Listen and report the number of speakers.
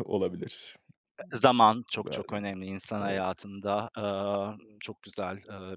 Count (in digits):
2